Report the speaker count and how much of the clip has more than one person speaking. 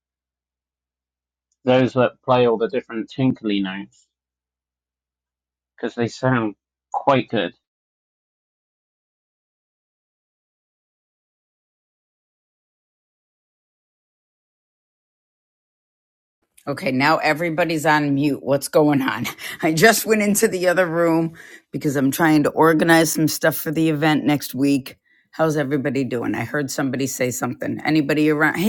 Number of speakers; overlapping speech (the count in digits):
2, no overlap